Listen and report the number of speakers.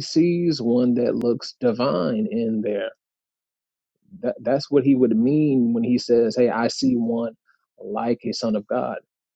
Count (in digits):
1